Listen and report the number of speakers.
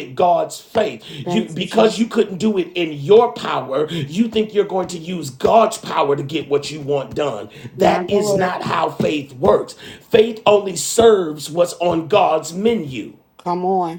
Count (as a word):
two